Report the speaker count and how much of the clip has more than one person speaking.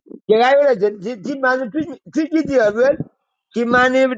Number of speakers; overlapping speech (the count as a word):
one, no overlap